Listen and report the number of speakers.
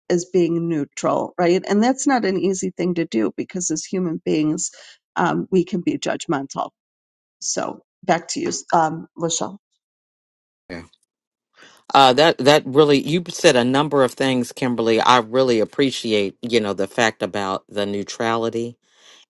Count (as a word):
two